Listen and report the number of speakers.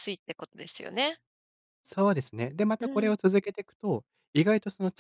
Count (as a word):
two